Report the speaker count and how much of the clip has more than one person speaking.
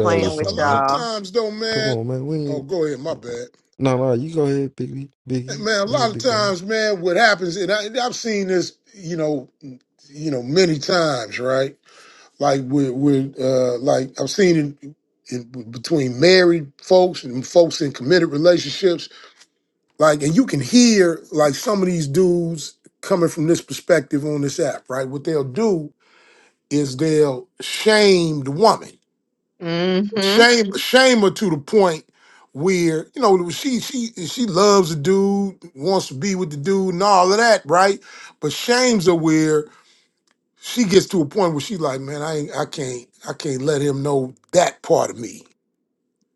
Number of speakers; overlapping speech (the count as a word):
three, about 6%